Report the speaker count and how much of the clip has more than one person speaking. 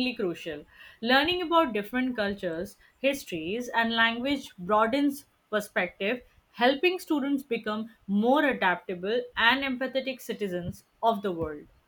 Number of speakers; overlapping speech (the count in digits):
1, no overlap